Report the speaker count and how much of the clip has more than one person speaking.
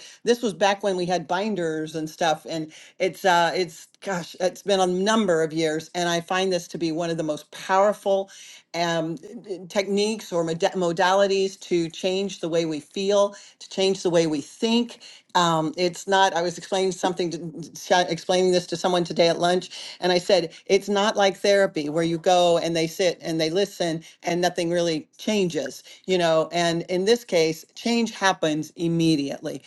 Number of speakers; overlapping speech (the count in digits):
1, no overlap